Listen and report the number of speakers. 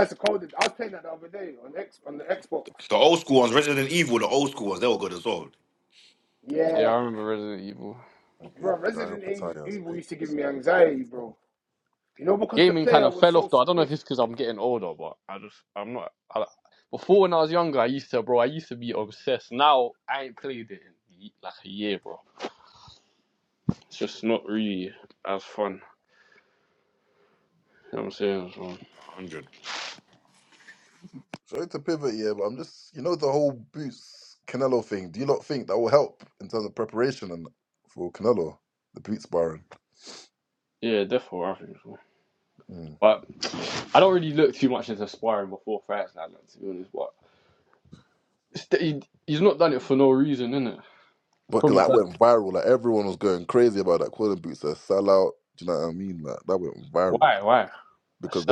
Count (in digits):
4